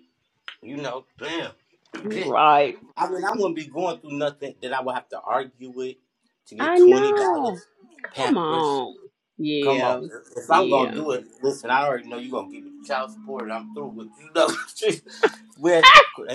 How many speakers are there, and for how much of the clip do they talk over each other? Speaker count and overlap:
two, about 17%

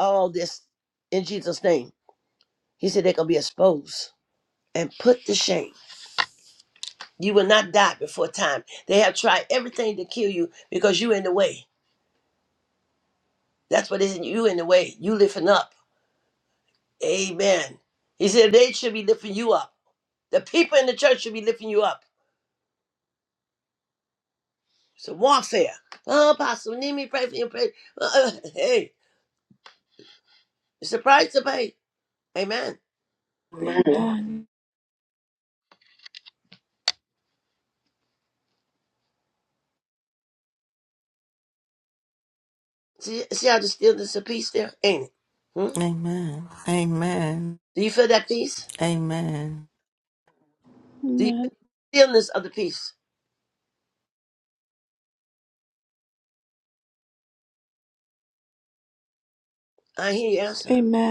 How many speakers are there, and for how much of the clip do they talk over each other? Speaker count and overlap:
three, under 1%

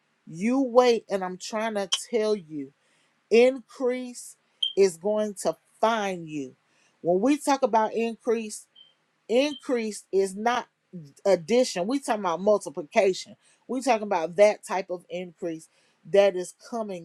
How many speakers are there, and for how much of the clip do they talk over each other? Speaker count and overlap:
one, no overlap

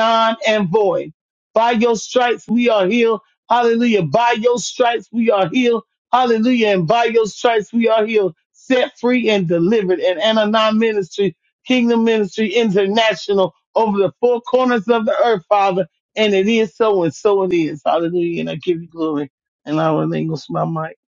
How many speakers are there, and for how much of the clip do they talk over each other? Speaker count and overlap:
one, no overlap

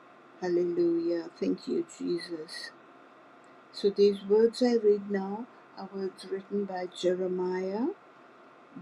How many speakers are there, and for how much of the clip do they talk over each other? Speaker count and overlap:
one, no overlap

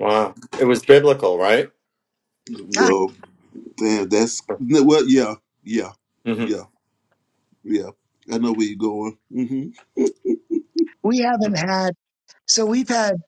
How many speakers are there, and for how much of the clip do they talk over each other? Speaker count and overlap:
three, about 2%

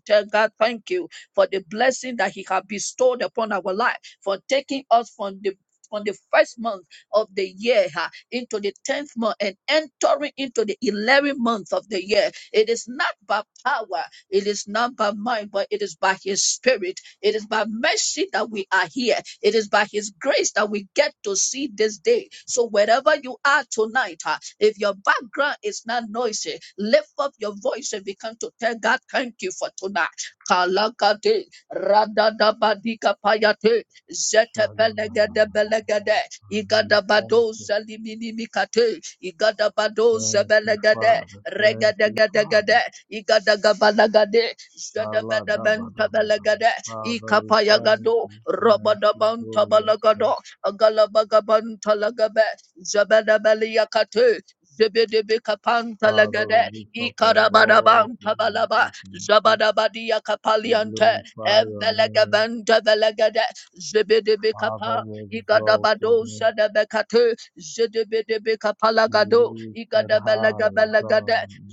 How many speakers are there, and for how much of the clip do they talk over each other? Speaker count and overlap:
two, about 21%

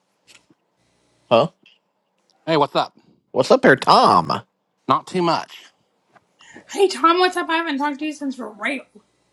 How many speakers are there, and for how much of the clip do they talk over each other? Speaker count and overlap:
three, no overlap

